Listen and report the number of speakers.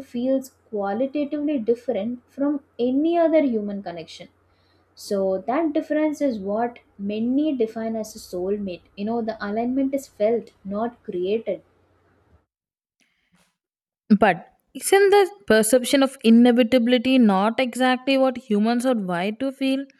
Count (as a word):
two